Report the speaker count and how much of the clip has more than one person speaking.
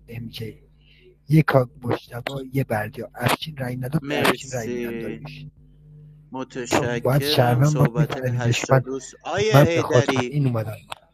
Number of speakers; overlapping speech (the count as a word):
two, about 36%